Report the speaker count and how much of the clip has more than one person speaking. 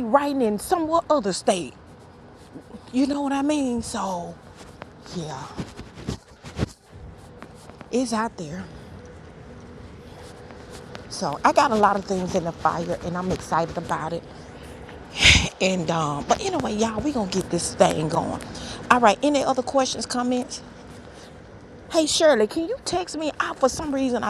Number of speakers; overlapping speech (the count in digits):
1, no overlap